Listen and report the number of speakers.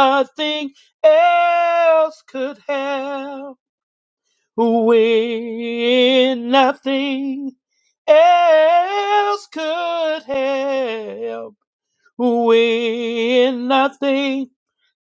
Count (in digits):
1